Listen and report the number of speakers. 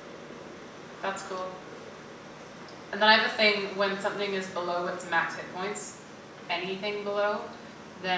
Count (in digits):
1